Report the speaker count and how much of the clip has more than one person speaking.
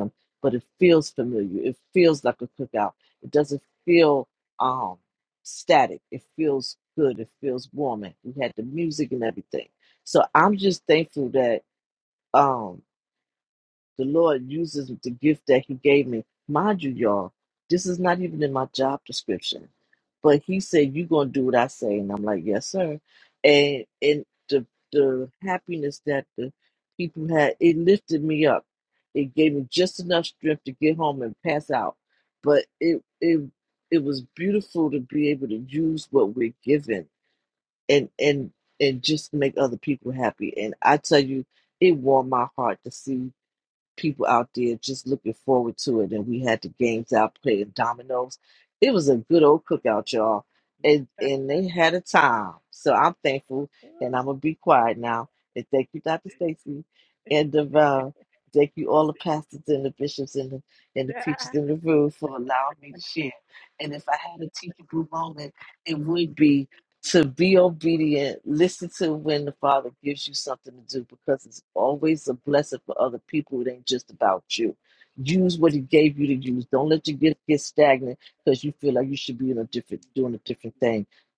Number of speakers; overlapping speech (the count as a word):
one, no overlap